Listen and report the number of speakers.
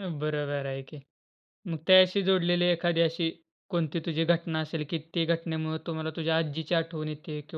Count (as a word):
one